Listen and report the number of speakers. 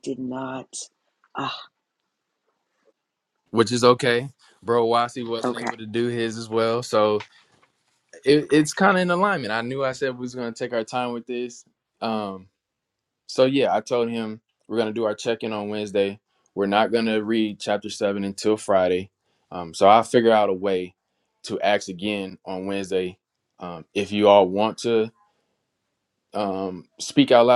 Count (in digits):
2